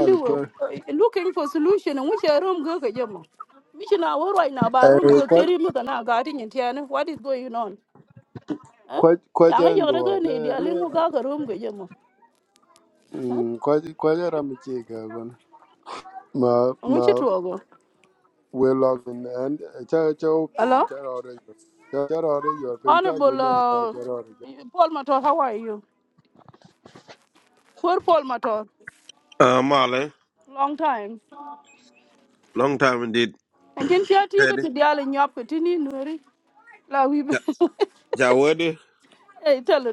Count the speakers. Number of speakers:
3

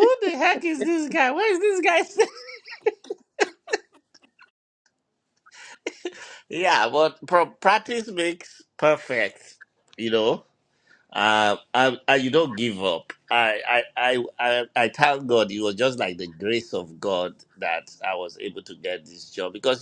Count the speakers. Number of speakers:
1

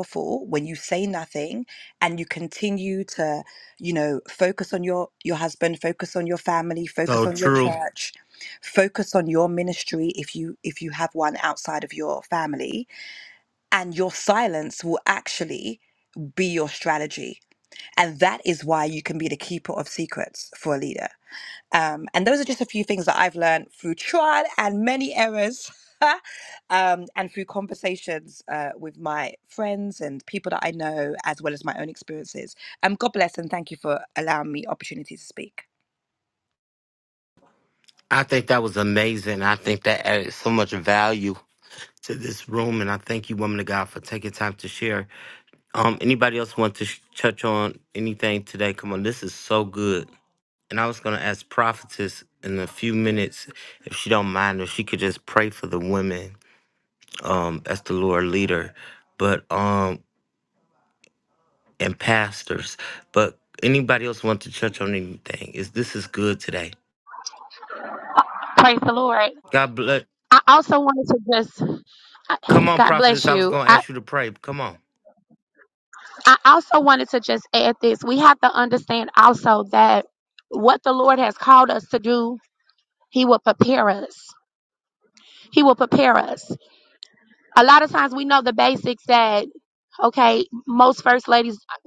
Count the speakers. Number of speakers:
3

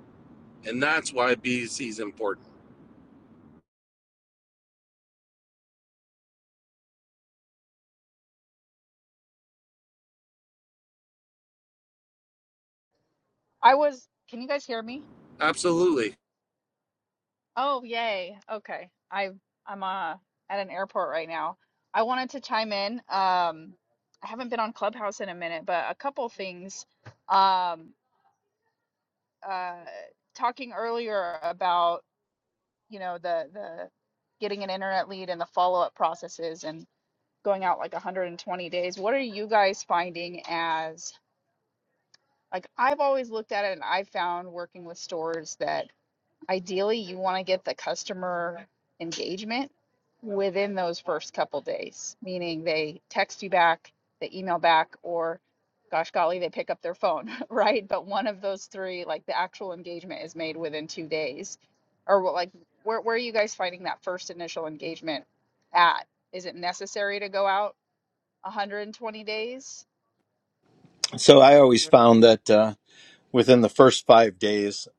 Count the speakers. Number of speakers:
3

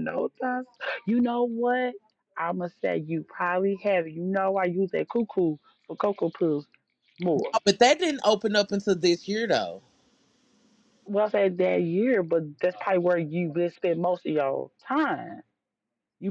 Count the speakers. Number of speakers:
2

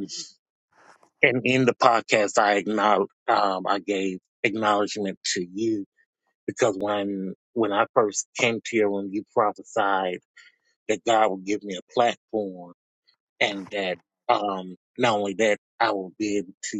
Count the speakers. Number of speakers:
1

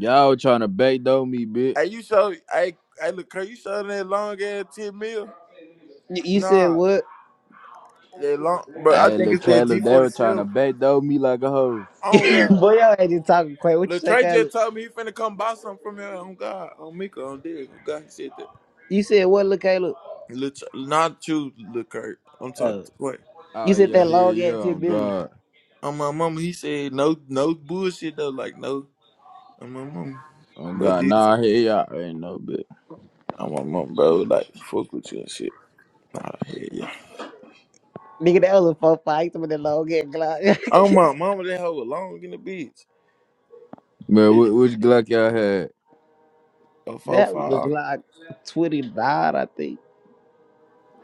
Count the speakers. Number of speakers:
3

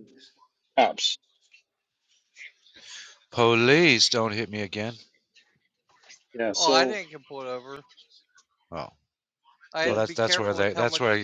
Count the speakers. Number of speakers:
3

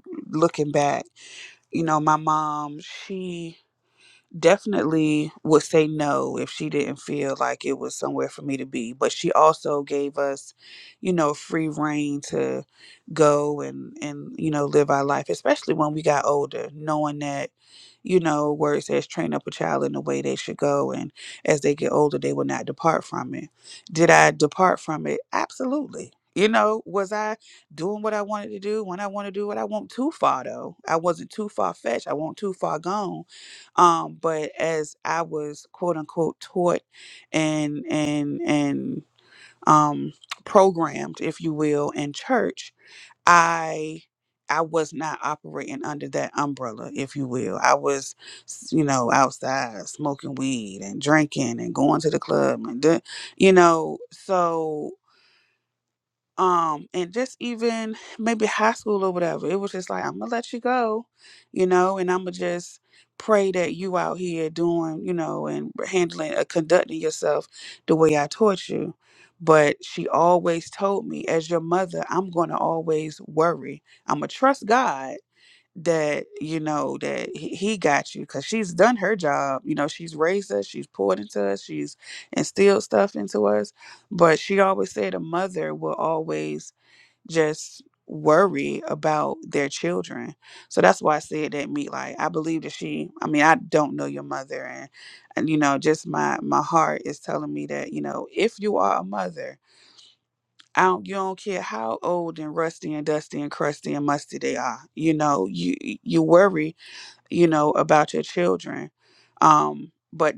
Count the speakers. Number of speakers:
1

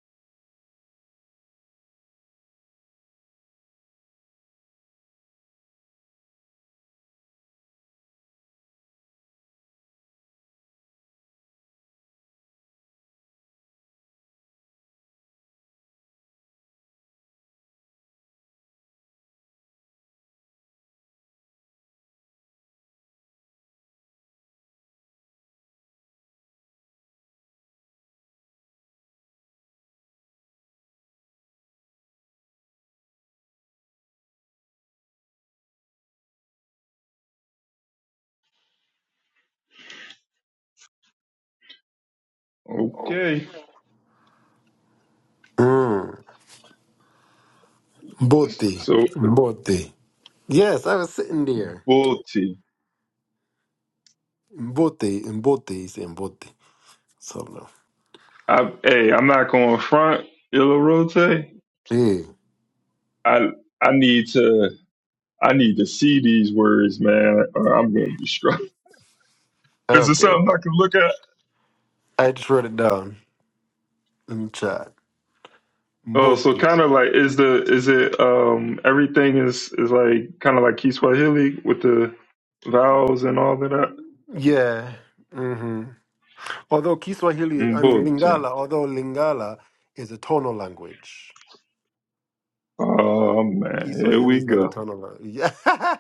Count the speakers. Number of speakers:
2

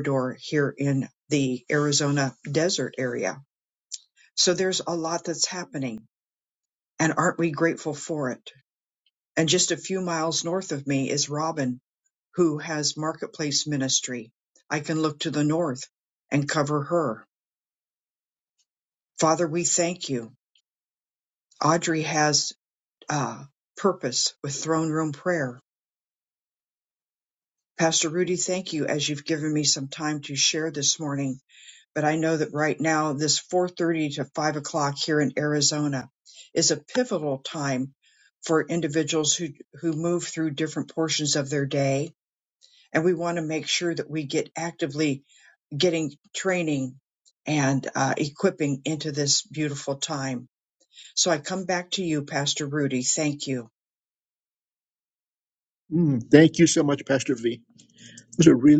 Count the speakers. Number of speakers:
2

